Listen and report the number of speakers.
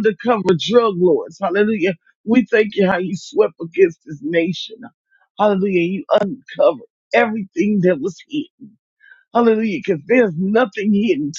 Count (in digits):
1